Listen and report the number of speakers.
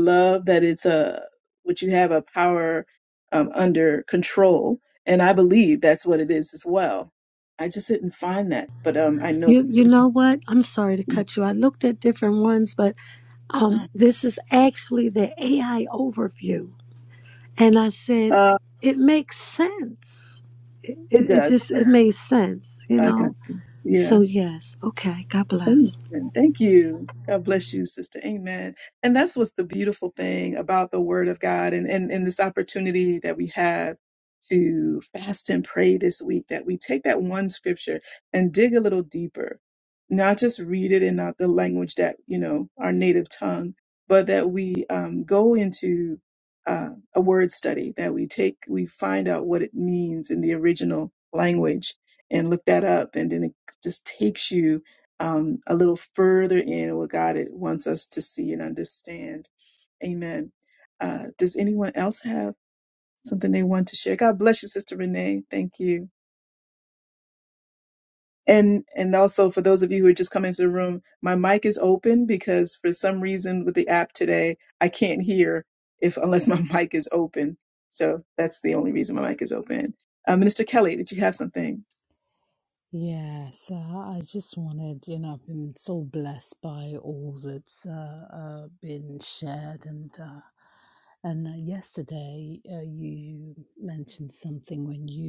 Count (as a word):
three